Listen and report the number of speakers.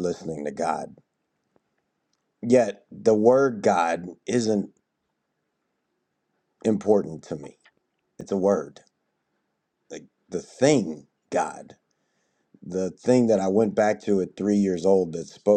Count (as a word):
one